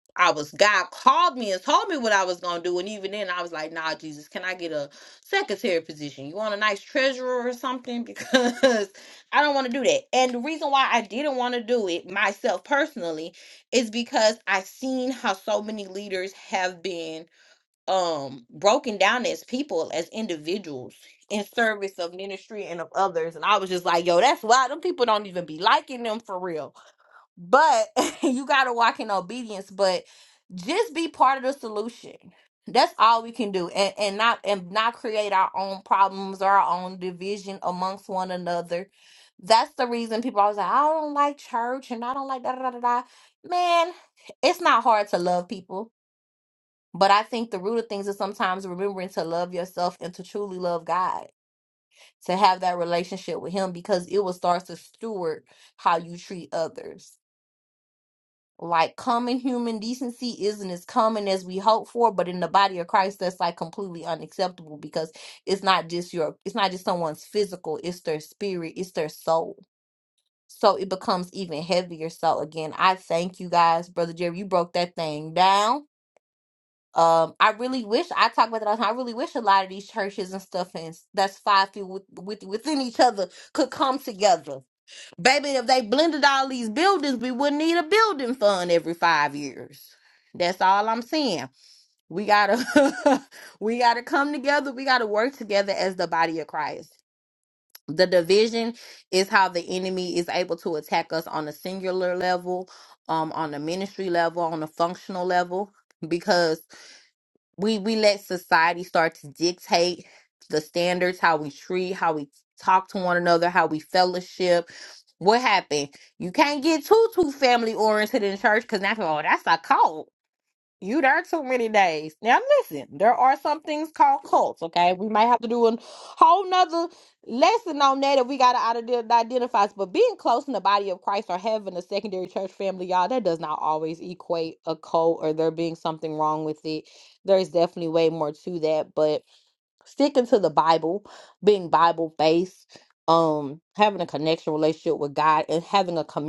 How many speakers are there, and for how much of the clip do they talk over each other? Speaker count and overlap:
one, no overlap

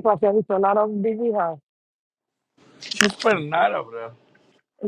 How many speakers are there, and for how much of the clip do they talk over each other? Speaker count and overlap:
two, no overlap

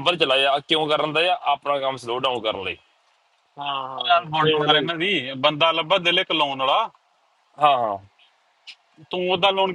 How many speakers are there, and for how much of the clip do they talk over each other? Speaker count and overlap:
three, about 9%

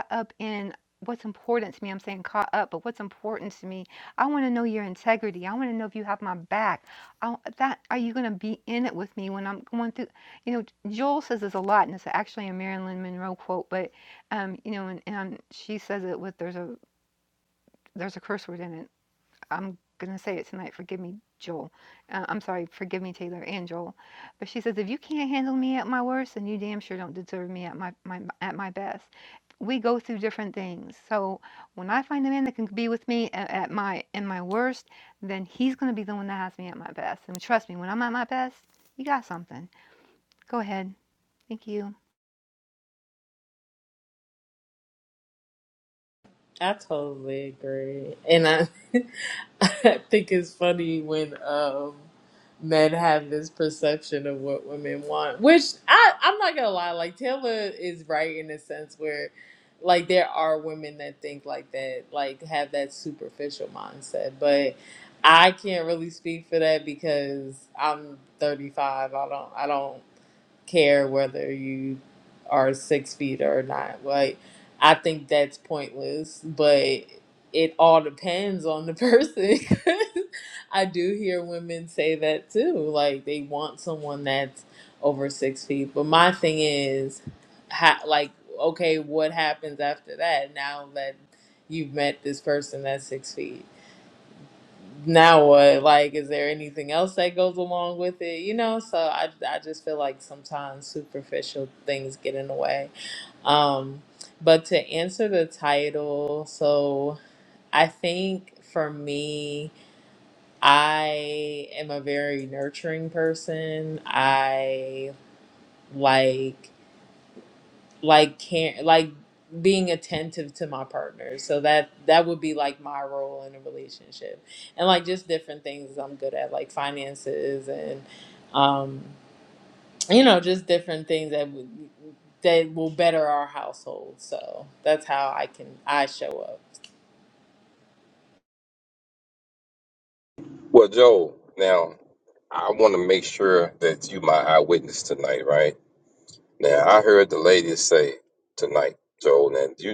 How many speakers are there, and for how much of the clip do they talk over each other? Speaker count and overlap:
three, no overlap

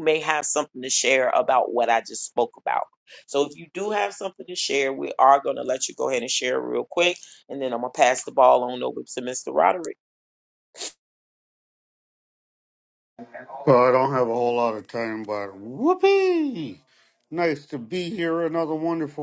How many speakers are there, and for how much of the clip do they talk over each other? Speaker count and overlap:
two, no overlap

